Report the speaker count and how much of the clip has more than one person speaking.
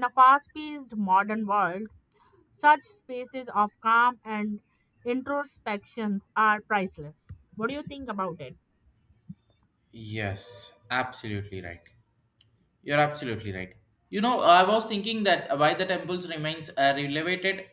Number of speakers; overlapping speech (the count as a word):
two, no overlap